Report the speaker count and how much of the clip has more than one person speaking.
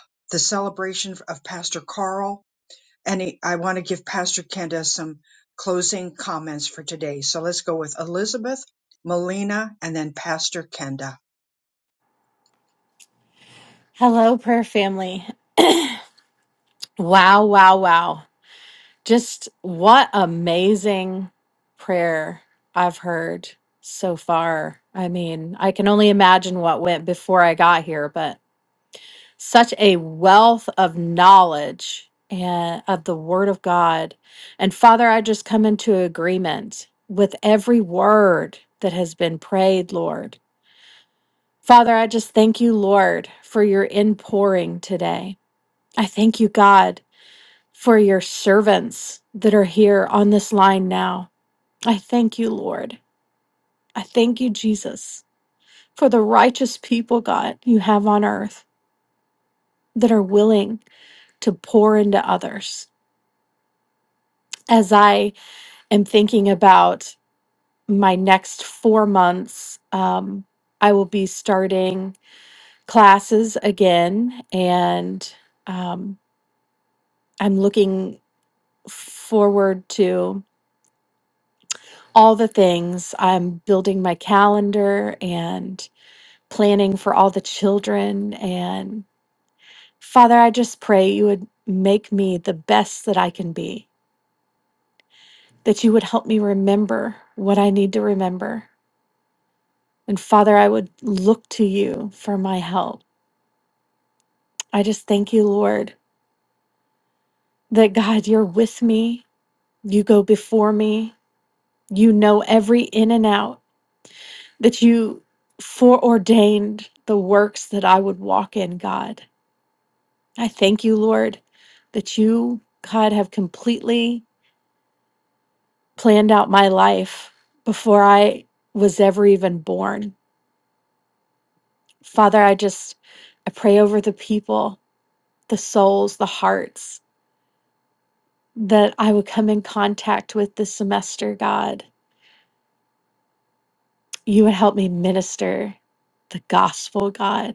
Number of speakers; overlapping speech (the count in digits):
2, no overlap